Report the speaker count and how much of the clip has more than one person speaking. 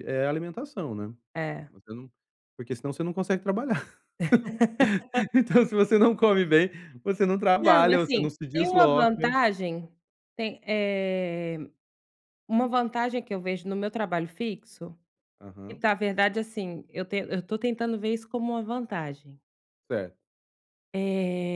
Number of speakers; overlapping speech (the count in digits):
2, about 8%